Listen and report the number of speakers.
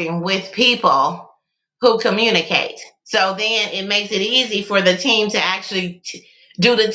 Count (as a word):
one